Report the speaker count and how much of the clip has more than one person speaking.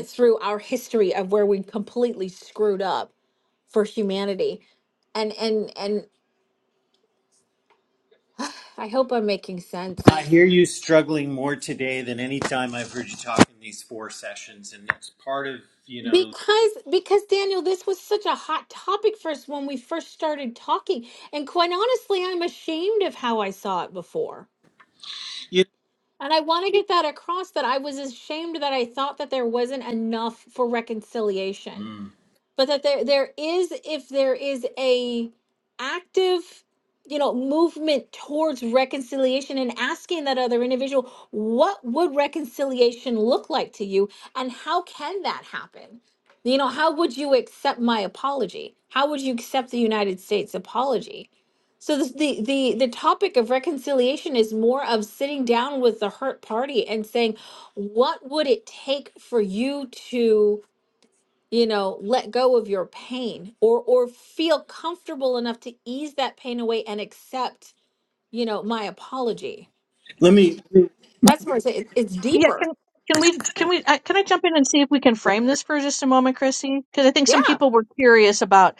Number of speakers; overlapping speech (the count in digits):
3, about 1%